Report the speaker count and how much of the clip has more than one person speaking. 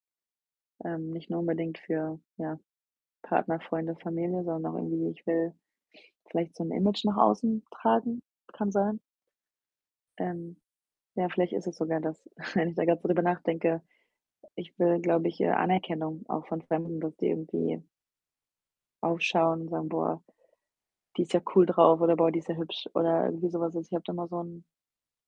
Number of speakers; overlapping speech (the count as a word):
one, no overlap